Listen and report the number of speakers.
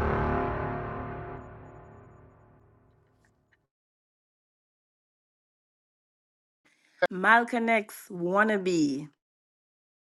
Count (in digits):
1